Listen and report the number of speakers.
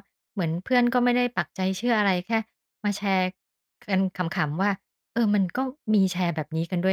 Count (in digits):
1